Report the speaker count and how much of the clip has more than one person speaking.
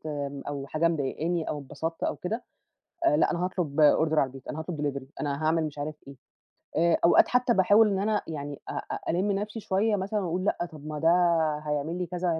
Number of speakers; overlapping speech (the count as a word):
one, no overlap